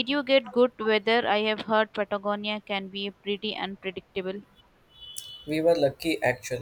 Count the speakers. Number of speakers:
2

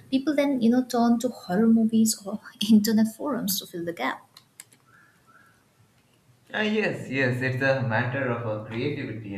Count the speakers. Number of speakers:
2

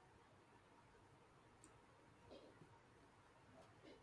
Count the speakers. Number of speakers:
0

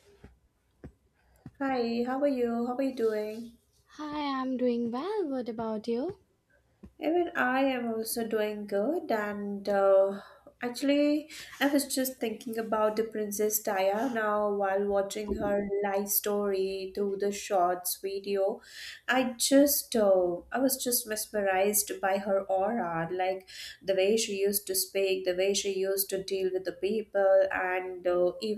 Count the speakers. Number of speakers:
2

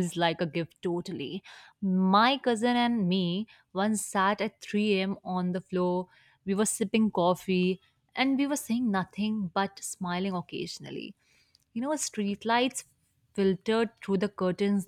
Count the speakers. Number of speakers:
1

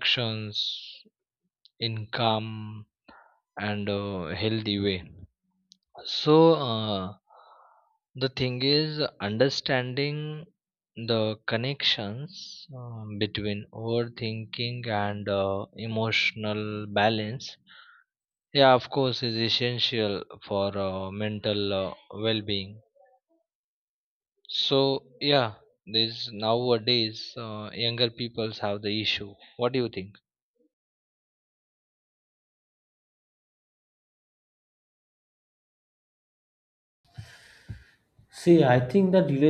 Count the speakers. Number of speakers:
2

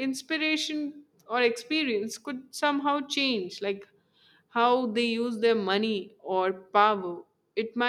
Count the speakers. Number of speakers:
1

